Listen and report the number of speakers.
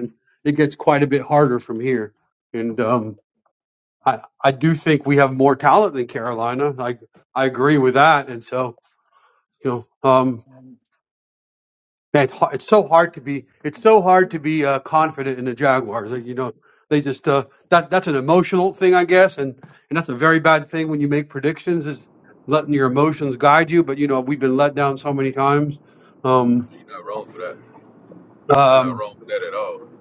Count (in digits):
2